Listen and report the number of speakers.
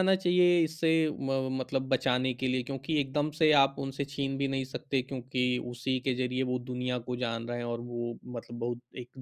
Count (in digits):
1